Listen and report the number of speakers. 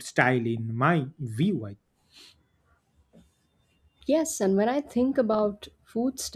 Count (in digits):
2